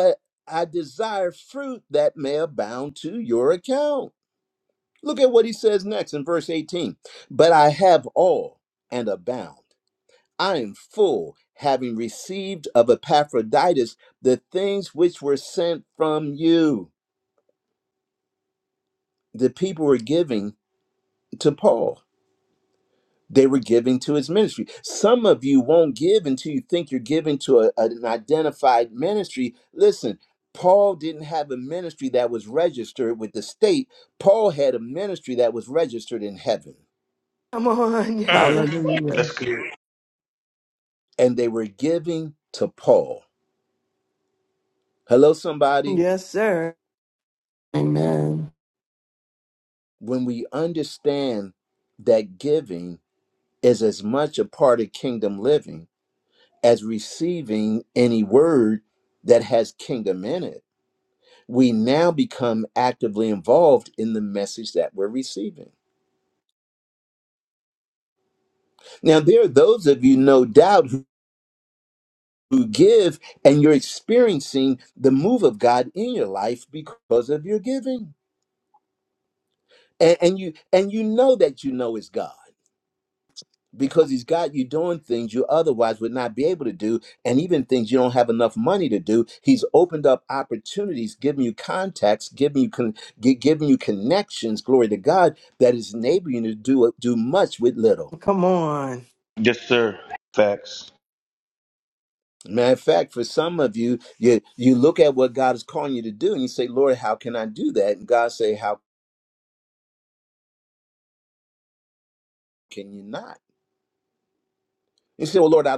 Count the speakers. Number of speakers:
4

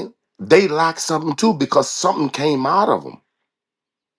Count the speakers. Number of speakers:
1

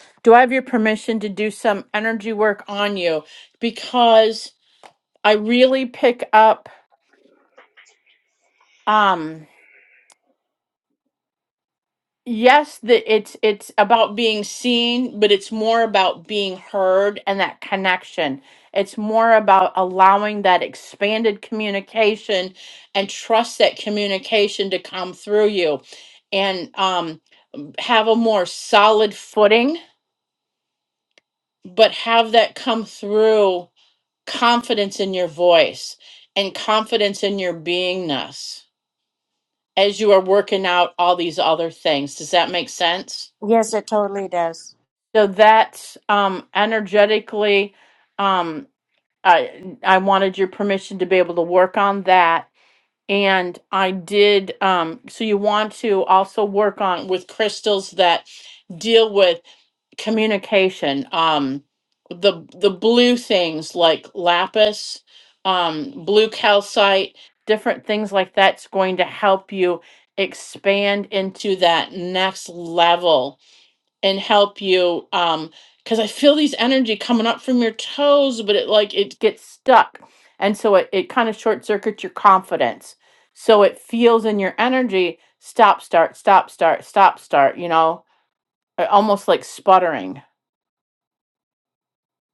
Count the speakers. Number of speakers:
2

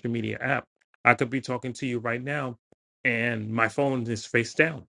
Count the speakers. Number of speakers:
1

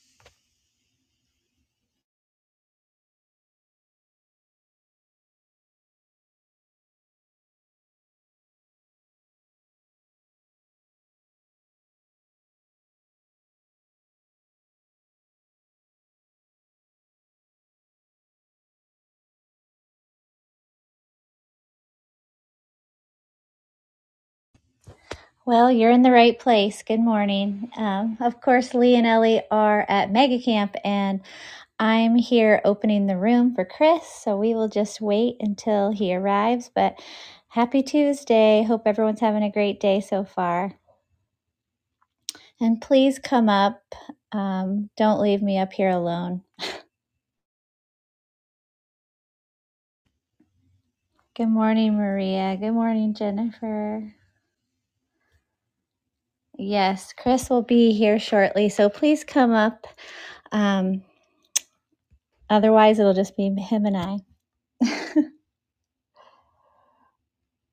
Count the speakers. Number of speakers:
1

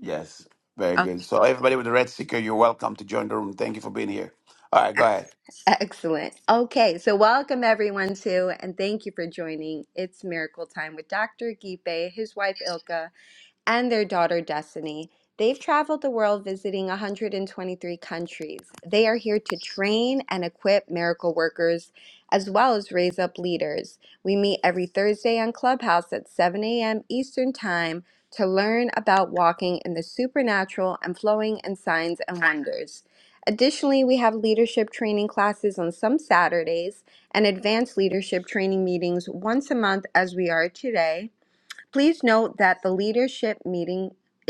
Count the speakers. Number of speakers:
2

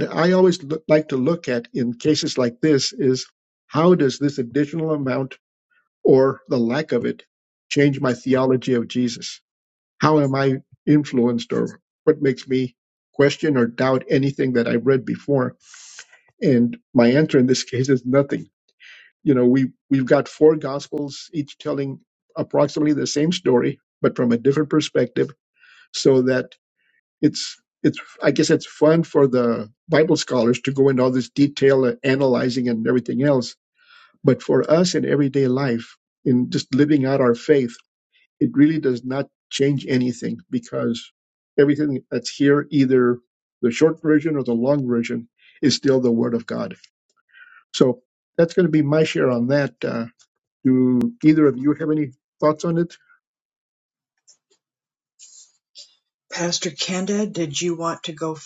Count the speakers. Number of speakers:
2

